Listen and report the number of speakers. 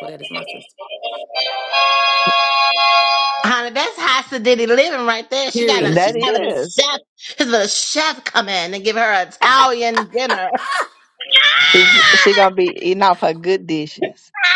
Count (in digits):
3